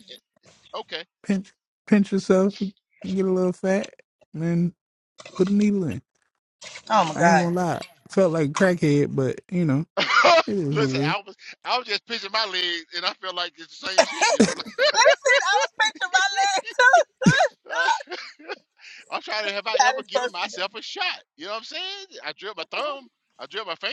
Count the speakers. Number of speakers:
three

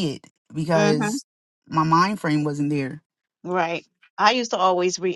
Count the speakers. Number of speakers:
two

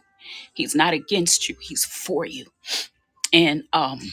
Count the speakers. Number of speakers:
one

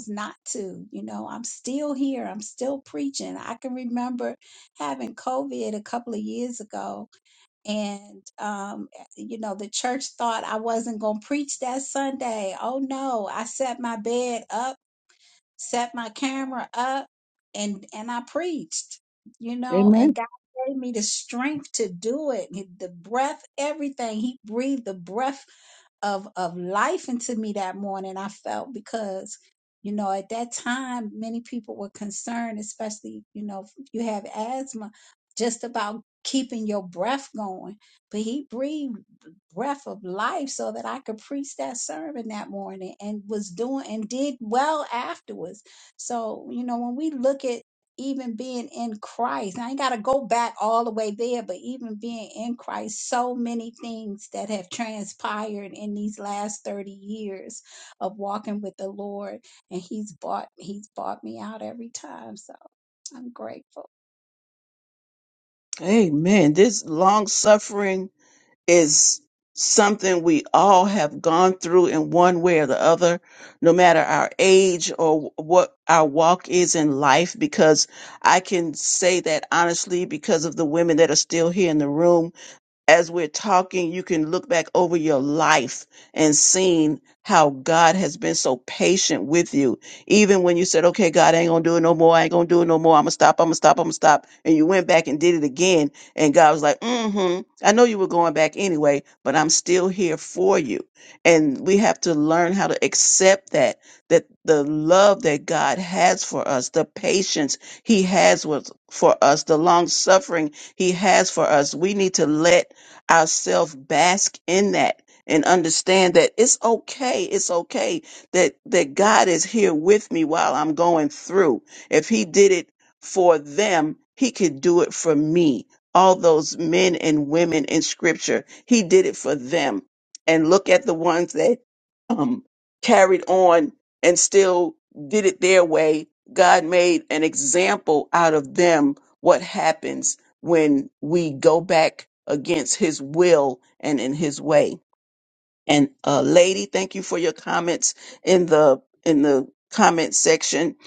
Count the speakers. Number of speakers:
two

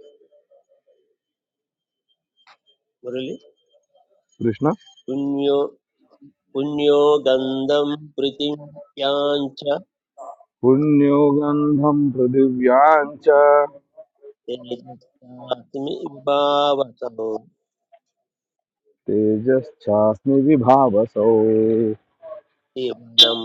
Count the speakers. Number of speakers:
two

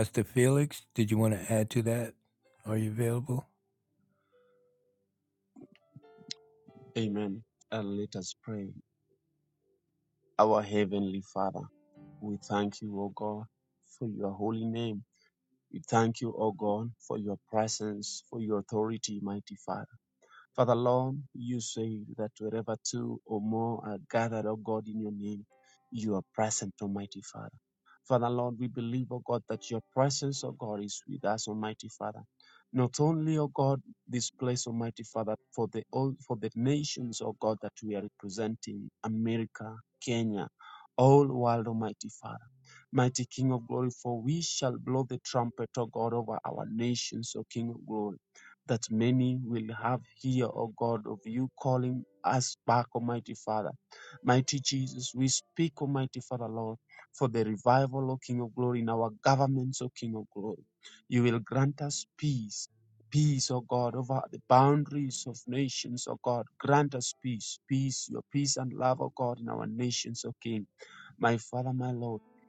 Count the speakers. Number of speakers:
two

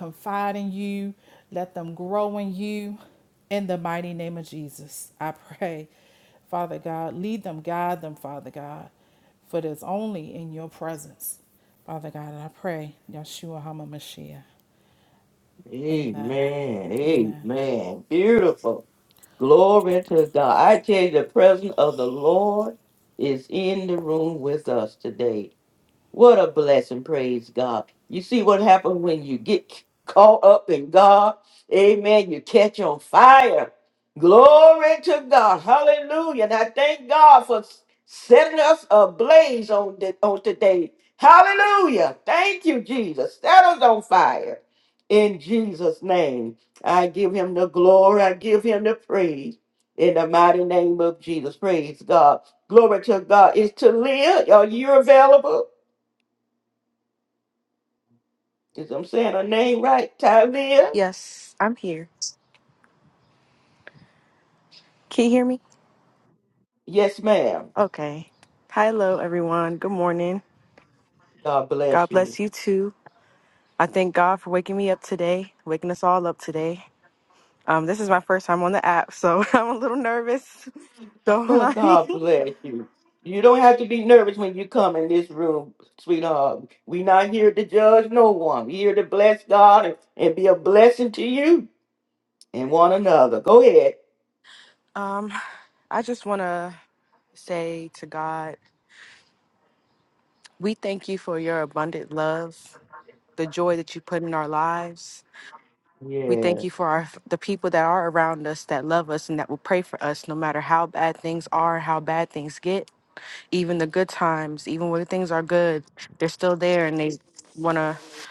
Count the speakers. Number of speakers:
three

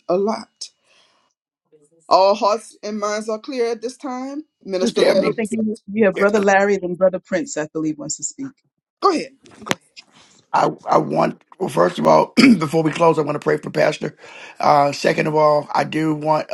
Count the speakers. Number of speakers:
three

